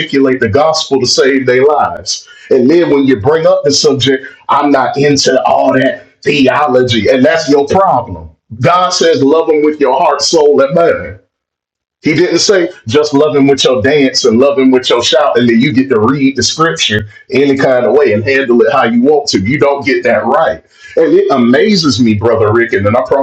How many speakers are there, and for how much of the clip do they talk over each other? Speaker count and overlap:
1, no overlap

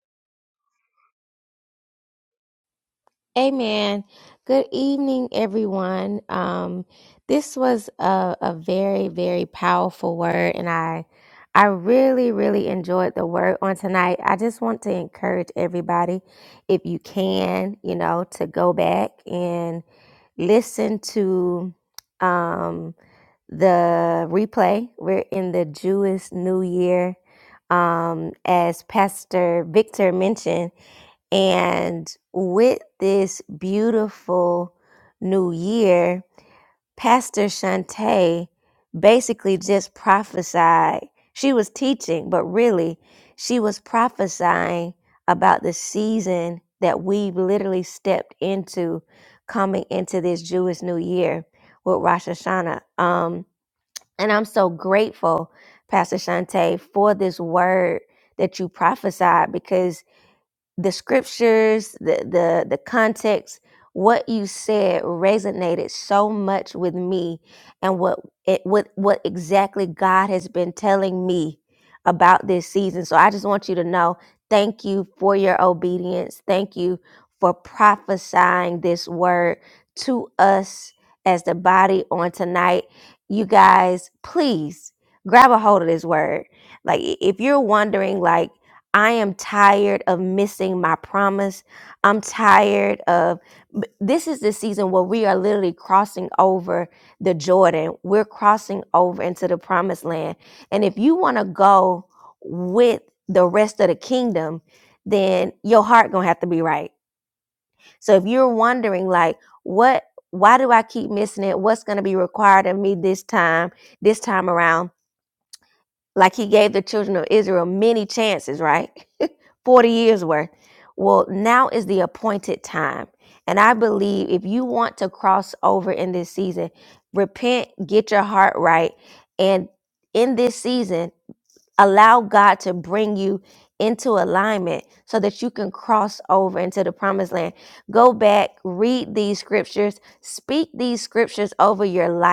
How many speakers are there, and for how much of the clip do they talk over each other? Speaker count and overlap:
1, no overlap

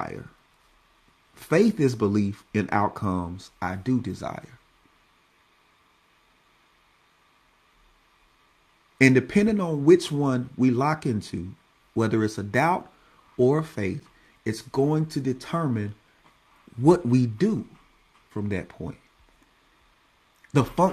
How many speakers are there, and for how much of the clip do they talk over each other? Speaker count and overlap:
1, no overlap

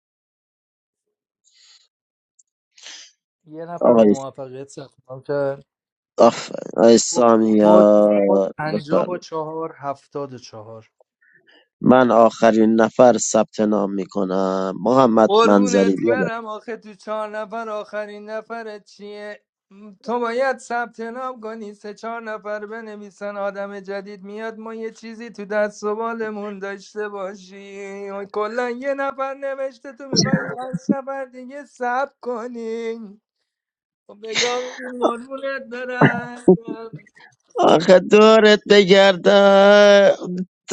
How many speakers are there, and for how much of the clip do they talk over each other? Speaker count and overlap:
2, about 5%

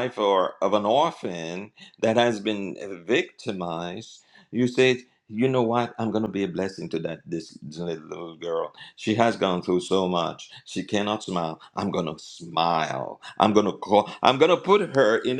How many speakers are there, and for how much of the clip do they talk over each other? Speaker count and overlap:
1, no overlap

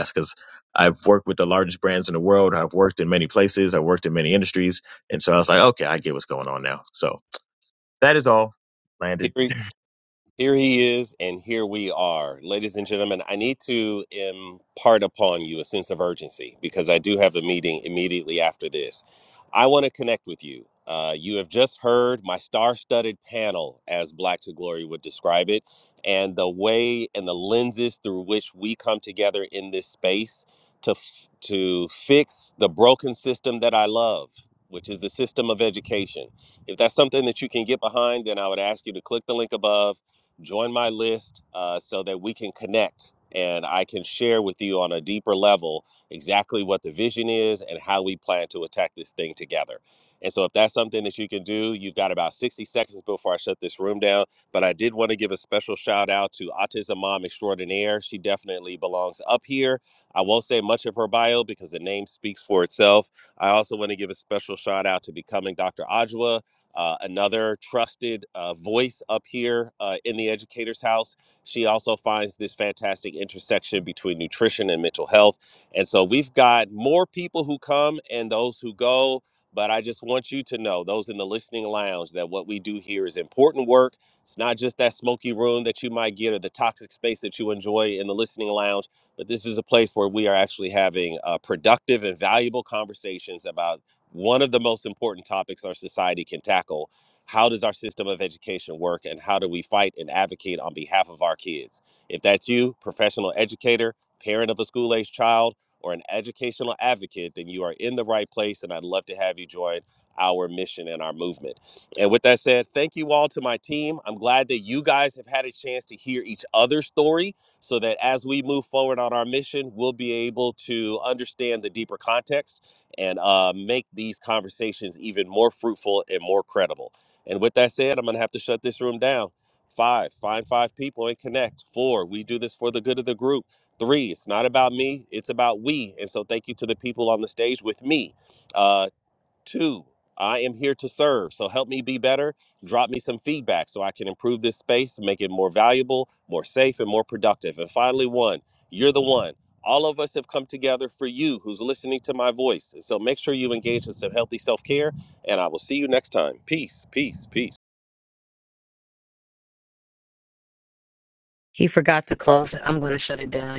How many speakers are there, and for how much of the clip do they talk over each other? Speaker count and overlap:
3, under 1%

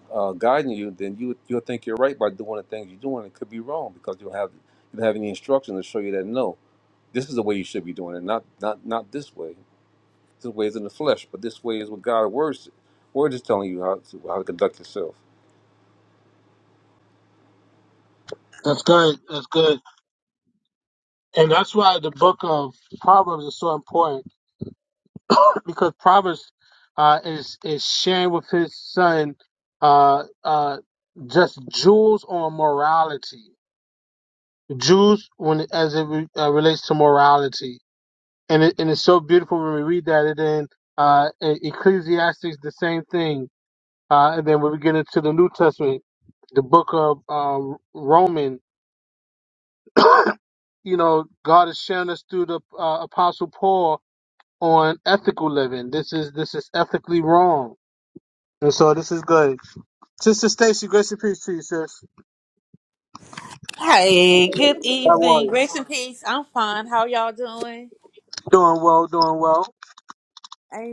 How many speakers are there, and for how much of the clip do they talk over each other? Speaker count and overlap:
3, about 1%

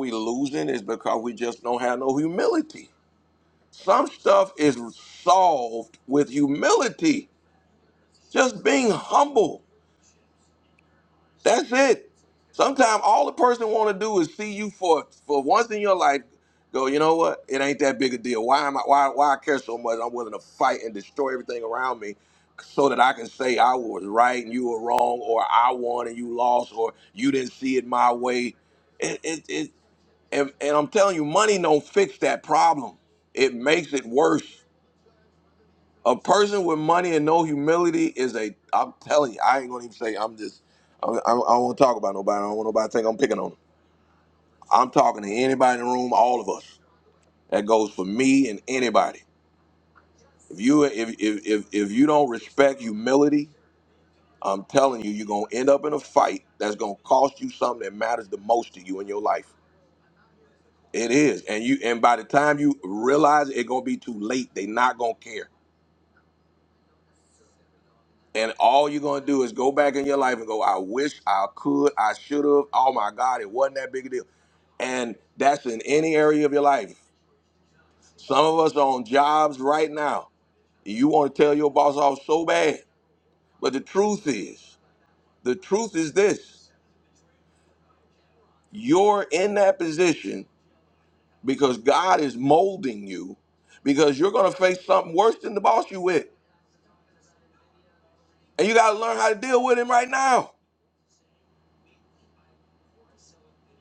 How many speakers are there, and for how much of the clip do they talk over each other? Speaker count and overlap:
1, no overlap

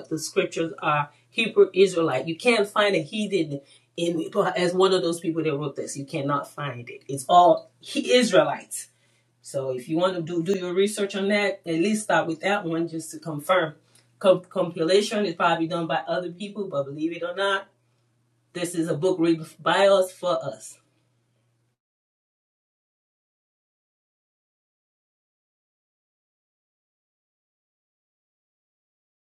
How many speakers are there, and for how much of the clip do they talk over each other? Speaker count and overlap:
1, no overlap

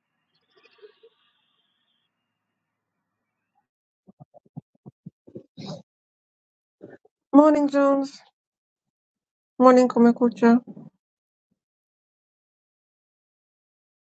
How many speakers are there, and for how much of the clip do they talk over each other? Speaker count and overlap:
1, no overlap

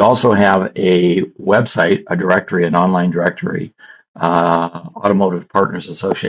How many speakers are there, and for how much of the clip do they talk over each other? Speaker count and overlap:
1, no overlap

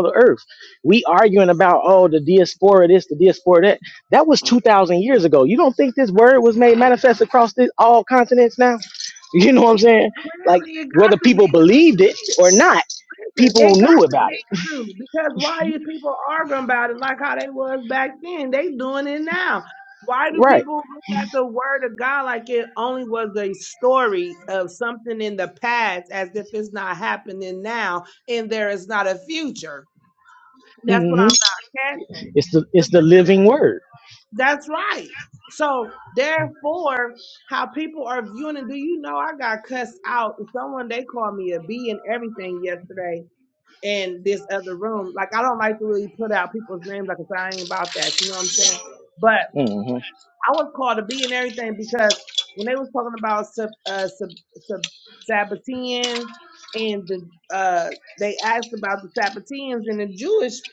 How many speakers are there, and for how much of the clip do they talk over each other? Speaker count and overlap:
2, about 5%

